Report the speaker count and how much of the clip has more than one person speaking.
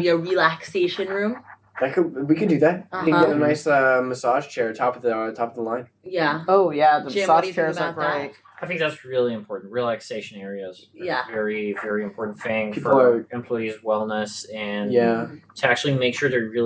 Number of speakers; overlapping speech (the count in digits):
4, about 19%